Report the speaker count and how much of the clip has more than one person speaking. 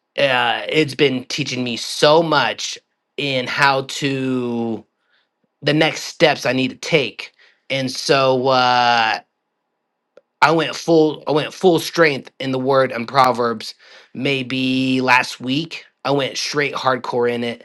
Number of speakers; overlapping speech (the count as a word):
one, no overlap